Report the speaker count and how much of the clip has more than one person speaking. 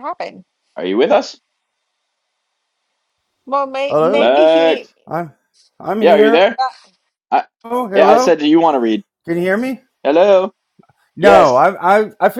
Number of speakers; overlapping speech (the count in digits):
3, about 16%